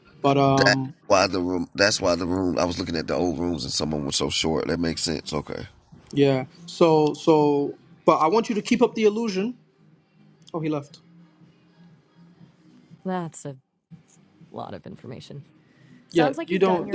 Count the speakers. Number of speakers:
three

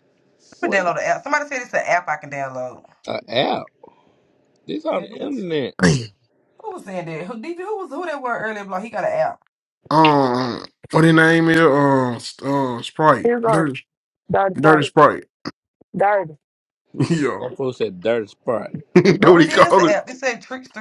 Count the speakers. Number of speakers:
four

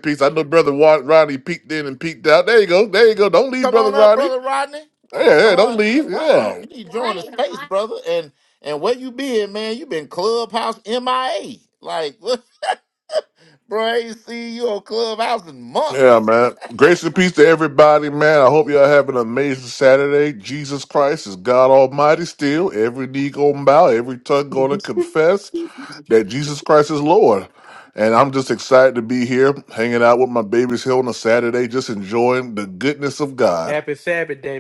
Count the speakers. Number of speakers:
three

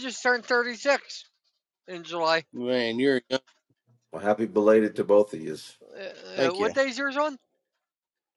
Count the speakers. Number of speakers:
three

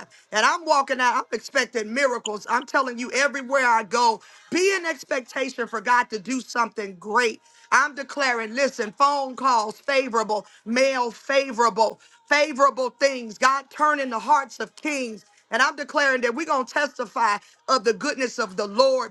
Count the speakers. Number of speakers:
one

